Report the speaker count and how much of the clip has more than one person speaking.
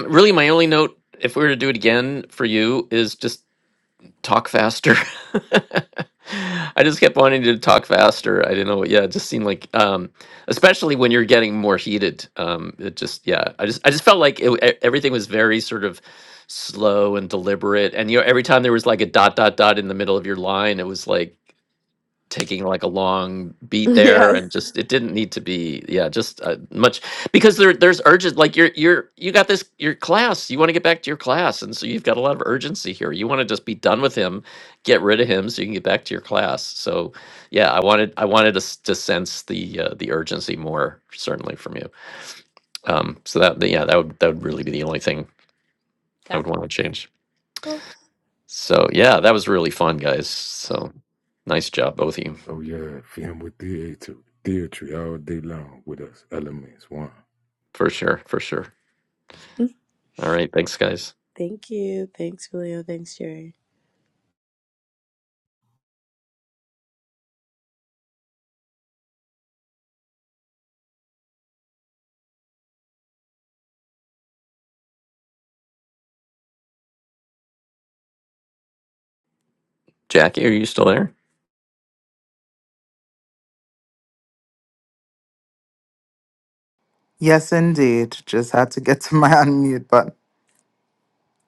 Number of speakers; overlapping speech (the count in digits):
4, about 1%